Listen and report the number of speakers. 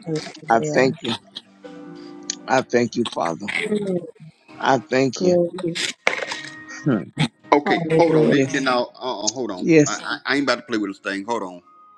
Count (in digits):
3